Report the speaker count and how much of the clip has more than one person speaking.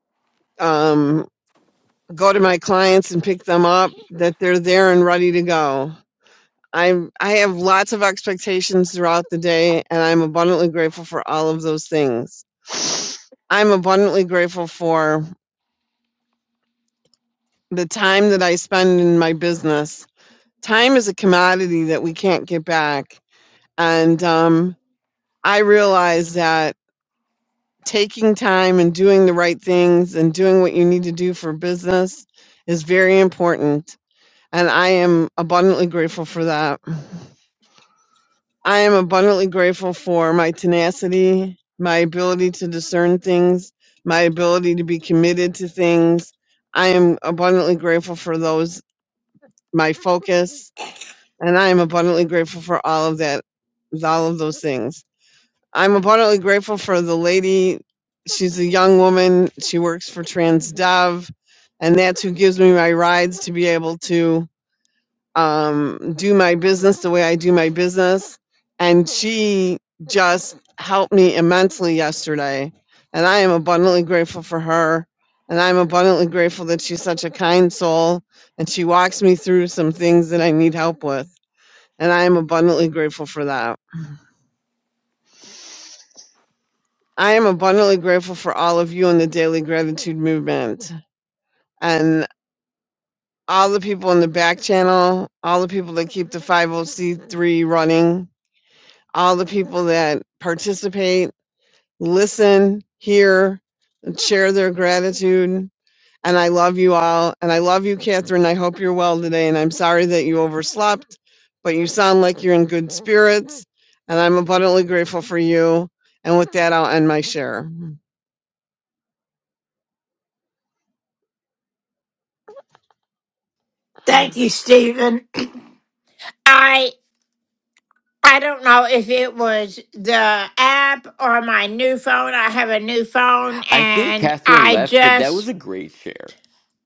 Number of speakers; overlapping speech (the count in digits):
3, about 1%